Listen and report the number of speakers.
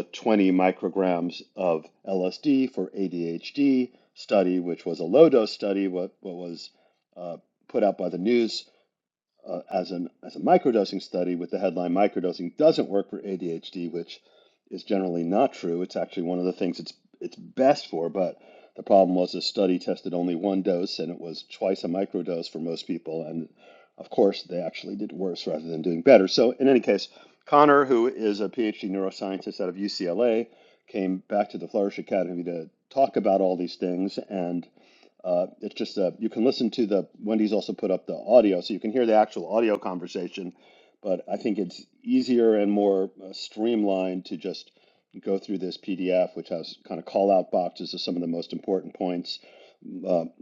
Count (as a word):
one